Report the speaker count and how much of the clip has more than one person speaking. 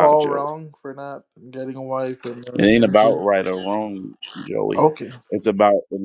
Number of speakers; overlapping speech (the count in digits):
2, about 21%